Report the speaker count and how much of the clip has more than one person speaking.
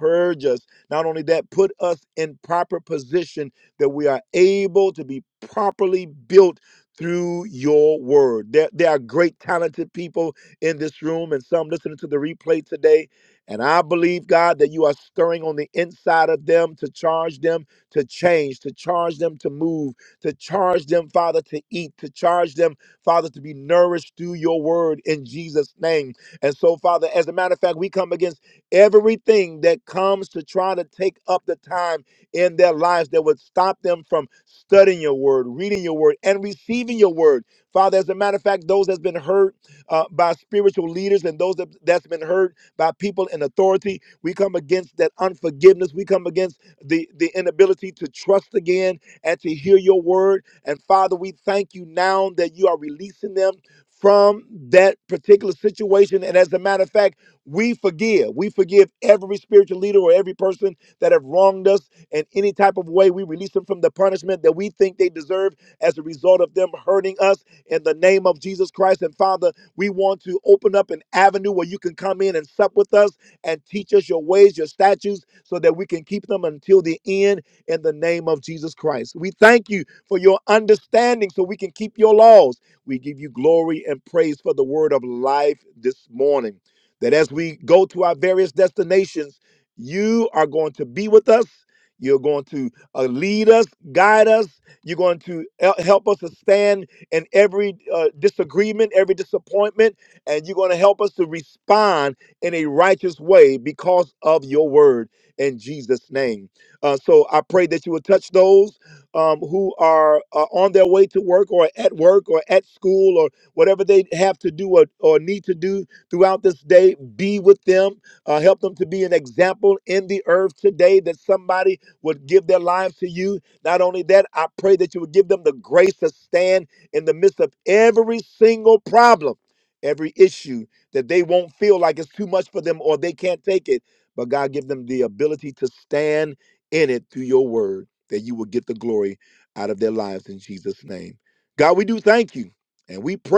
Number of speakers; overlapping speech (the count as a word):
one, no overlap